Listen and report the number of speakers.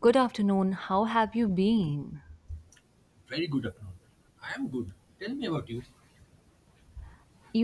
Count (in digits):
2